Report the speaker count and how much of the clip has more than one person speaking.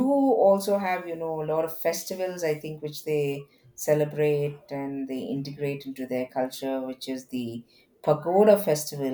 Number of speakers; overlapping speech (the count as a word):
one, no overlap